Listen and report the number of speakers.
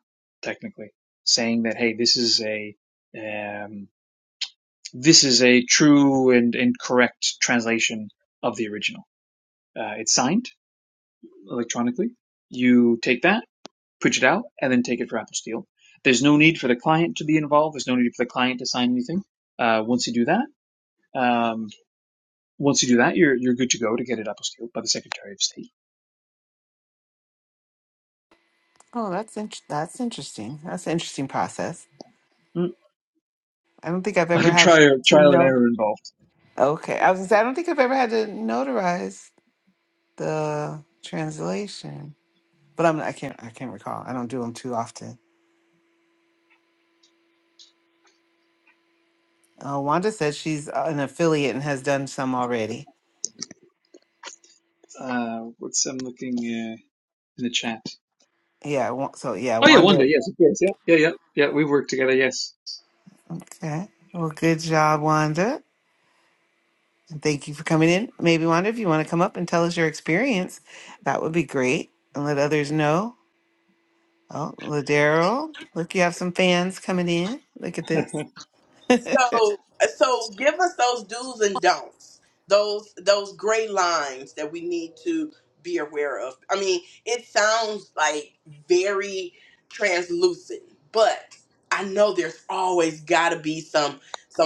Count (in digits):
3